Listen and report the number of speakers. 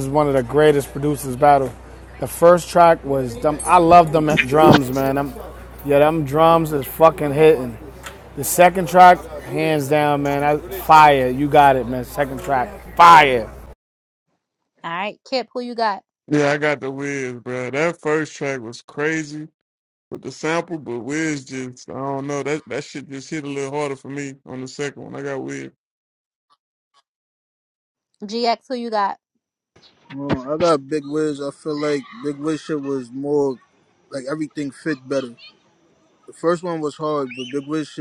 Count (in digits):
4